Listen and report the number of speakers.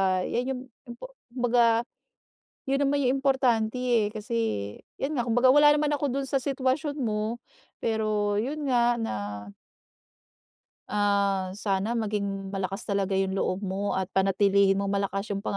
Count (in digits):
1